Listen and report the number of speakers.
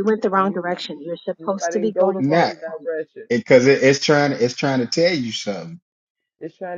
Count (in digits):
3